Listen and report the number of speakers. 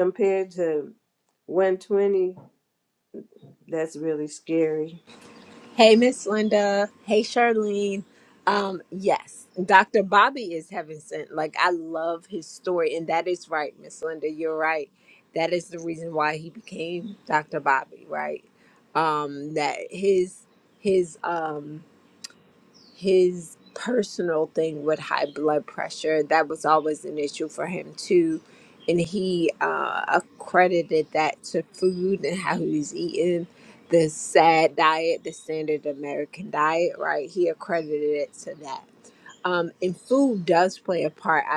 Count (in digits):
2